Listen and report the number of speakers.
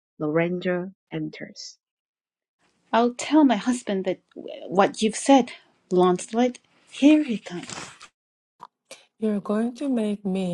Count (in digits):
3